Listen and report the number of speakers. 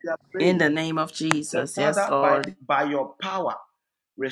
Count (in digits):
2